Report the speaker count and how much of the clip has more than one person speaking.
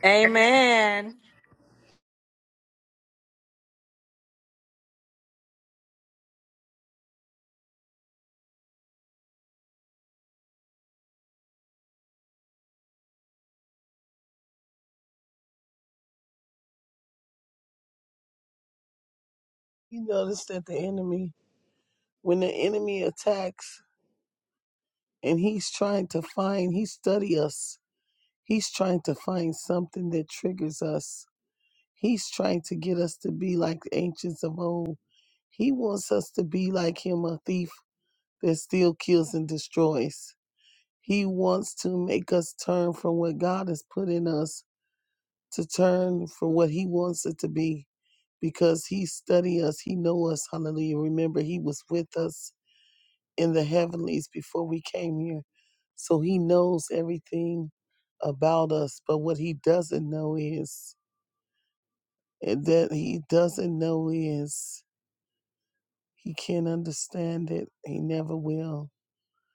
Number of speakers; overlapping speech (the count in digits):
2, no overlap